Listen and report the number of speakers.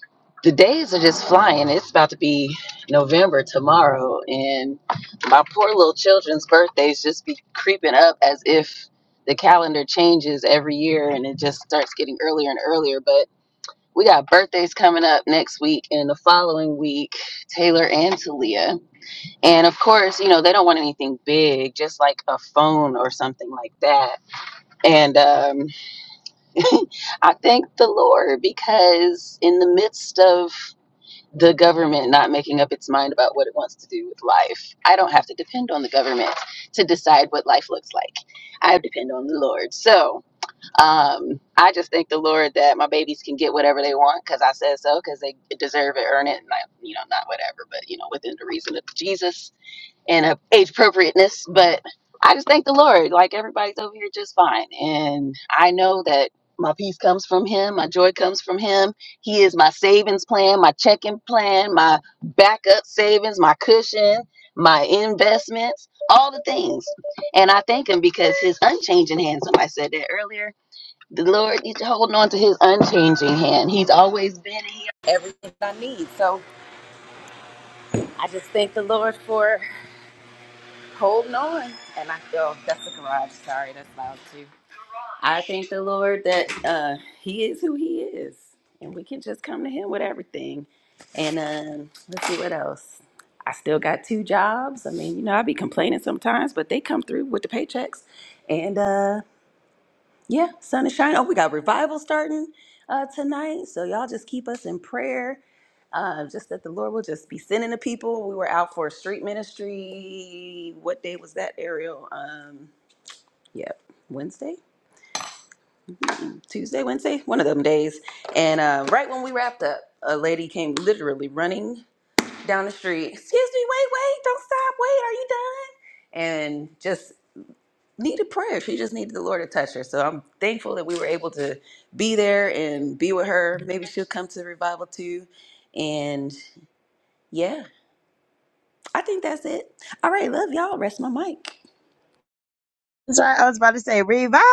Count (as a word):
two